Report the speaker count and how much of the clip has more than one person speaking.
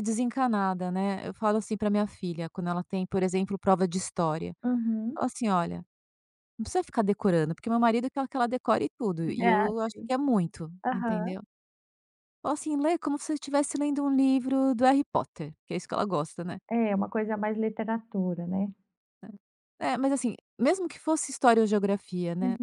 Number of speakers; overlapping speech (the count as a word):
two, about 5%